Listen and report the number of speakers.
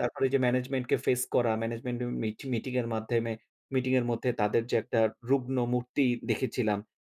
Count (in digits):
1